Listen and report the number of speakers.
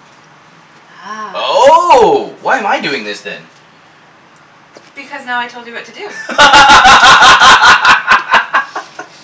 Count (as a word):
two